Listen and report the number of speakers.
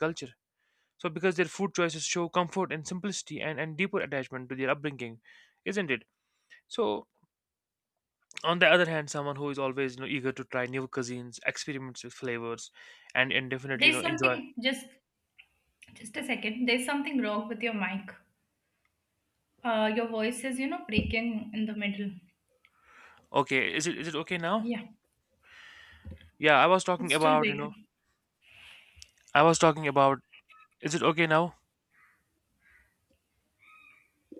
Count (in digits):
2